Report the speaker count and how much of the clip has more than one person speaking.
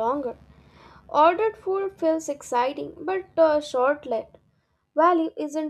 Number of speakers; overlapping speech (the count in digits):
1, no overlap